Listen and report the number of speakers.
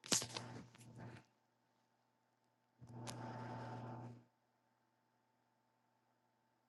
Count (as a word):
zero